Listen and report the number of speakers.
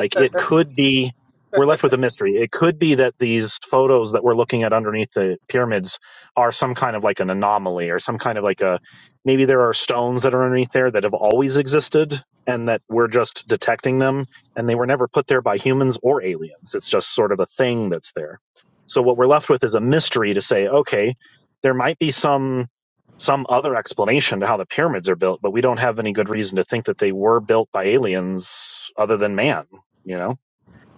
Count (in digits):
1